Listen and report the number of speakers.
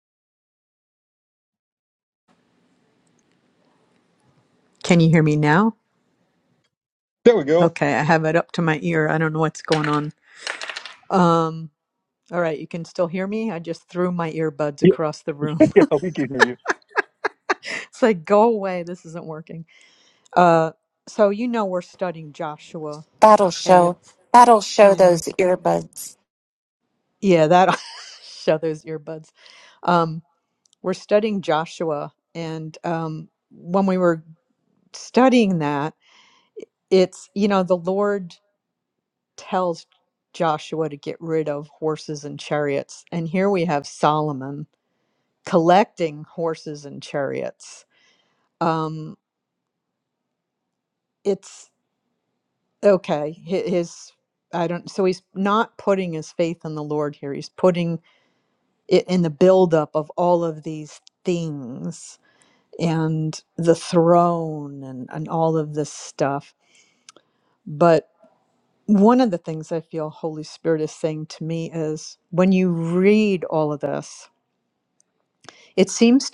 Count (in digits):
3